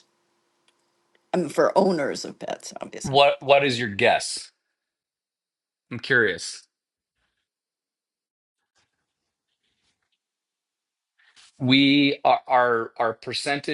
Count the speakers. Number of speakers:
two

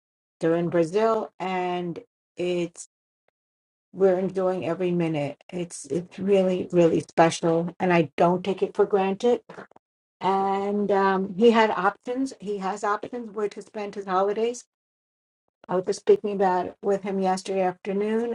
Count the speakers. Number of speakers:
one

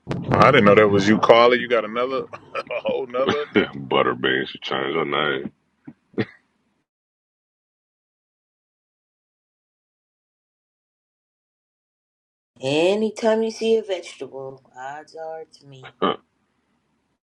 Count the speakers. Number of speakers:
three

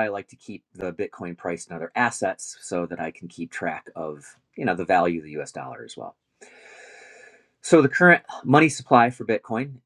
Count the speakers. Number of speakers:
one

